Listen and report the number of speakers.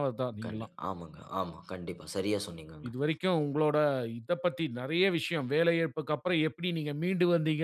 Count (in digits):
2